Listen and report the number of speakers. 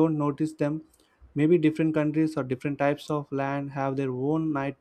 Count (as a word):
one